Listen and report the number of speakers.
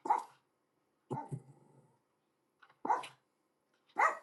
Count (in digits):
0